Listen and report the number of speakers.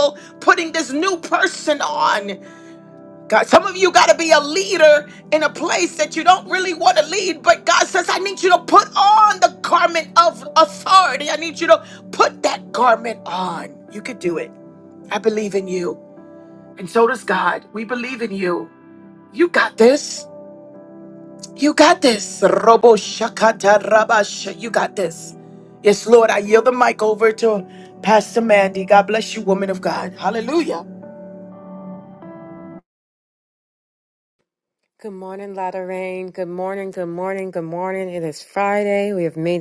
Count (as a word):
two